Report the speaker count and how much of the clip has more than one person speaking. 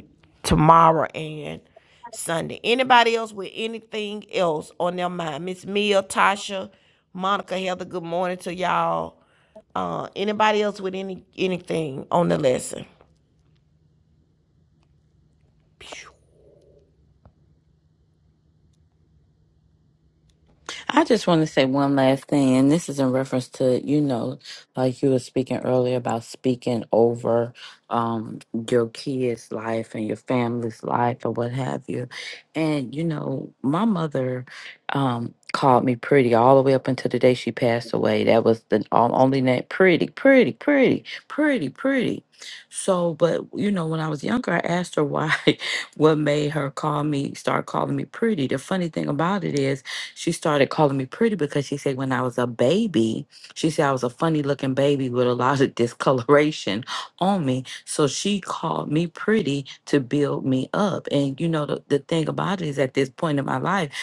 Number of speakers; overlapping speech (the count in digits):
2, no overlap